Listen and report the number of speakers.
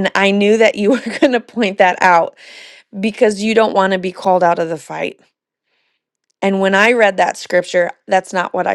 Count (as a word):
one